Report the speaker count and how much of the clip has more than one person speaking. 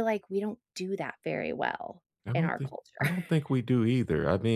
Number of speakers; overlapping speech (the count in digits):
2, about 16%